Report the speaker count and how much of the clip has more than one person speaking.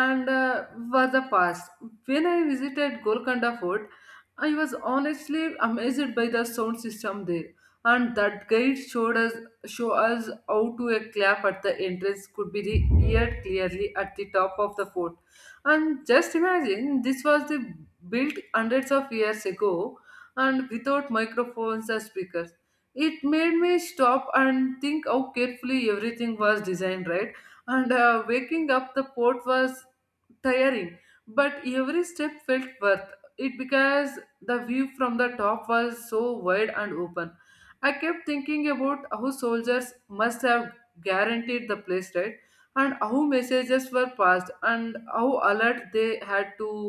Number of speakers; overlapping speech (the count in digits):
1, no overlap